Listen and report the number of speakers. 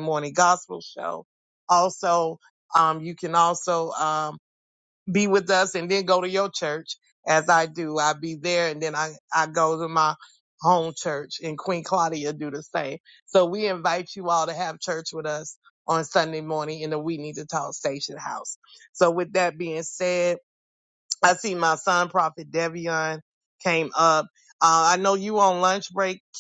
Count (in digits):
1